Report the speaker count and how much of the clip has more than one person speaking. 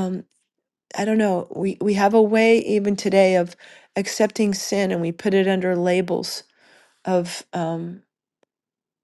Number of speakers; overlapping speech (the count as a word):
one, no overlap